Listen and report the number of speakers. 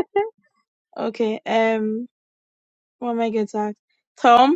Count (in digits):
1